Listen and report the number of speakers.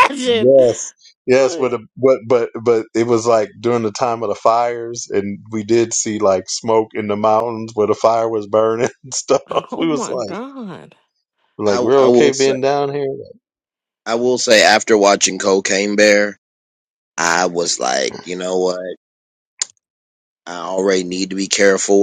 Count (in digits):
3